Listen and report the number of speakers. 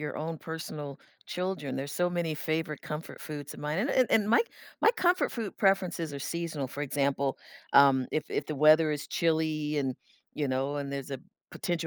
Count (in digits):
1